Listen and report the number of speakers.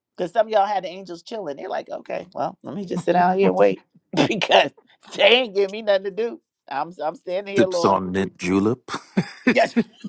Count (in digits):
2